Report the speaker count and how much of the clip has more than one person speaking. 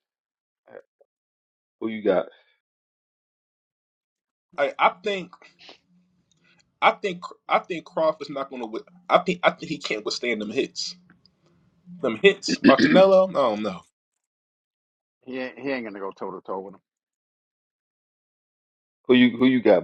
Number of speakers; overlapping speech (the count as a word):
three, no overlap